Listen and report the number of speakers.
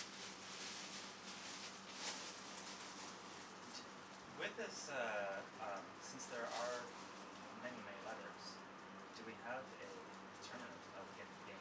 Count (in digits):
1